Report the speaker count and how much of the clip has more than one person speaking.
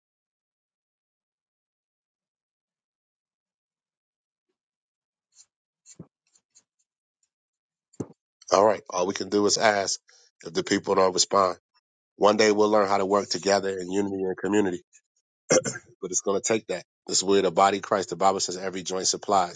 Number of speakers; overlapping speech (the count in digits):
1, no overlap